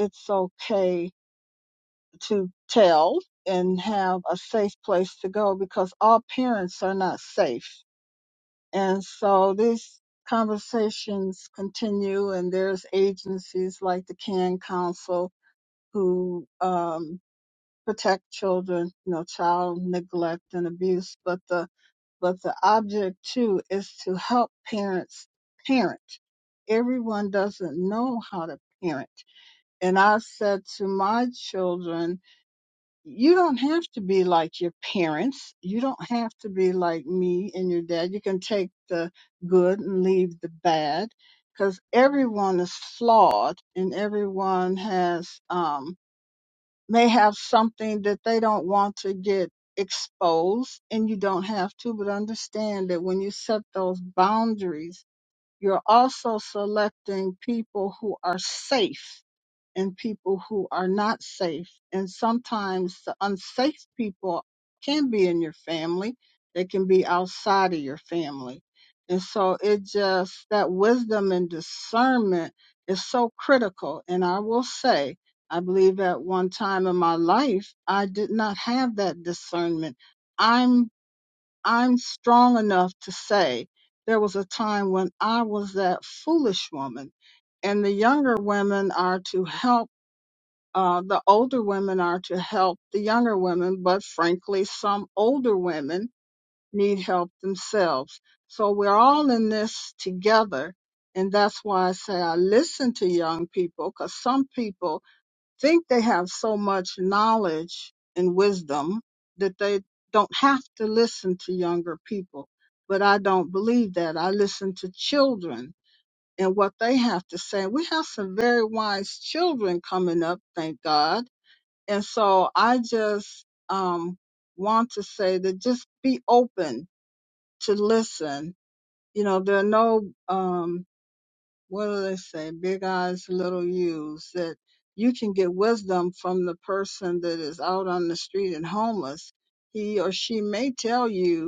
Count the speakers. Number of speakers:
one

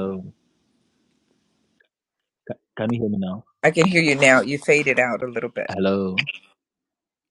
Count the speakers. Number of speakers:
two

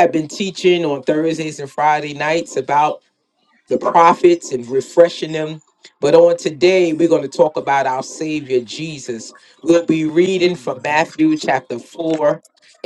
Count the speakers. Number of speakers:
one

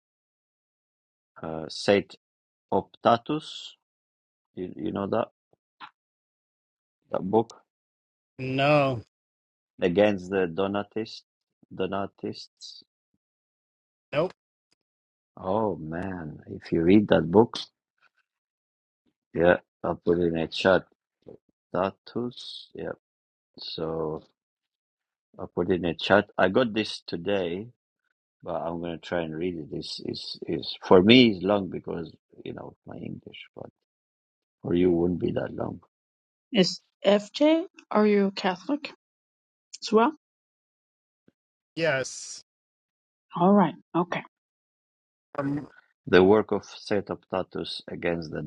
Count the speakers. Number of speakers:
three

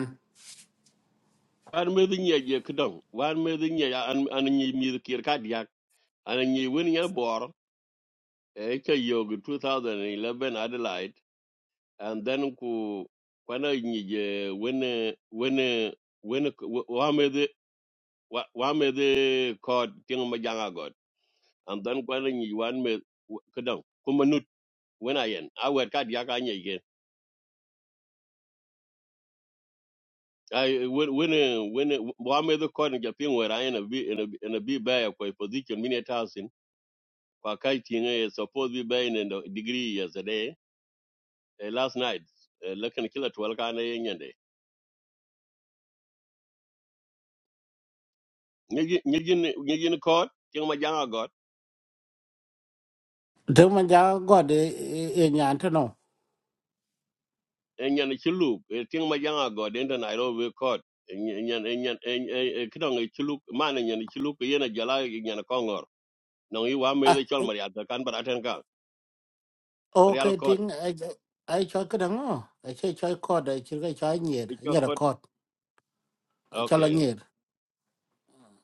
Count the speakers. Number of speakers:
two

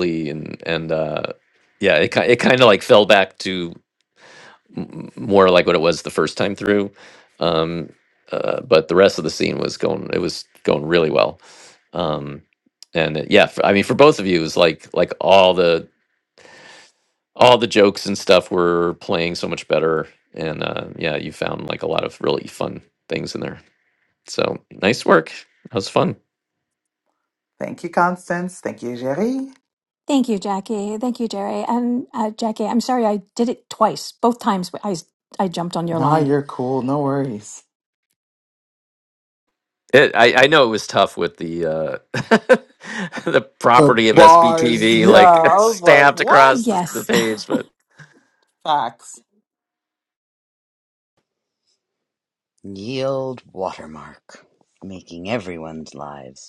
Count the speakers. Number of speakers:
four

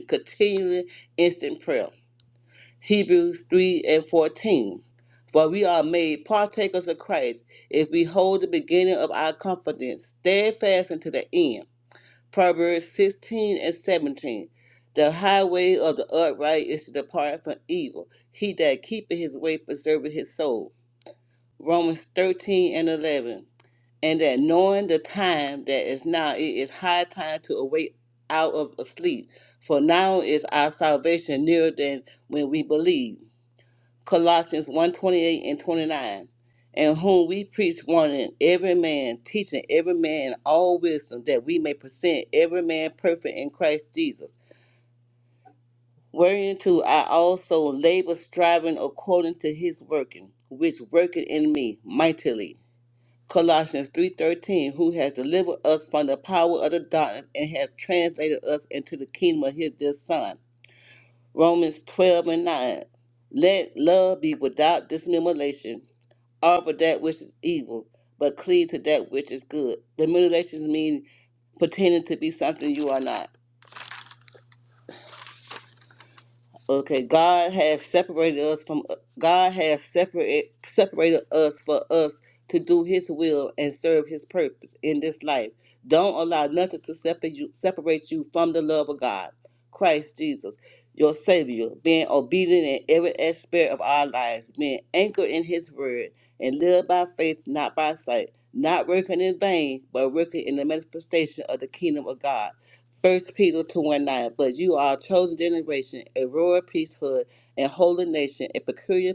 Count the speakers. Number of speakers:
one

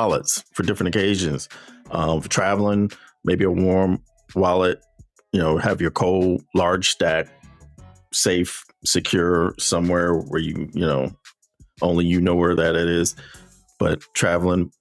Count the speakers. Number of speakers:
one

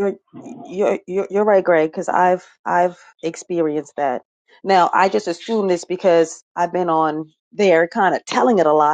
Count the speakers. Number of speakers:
one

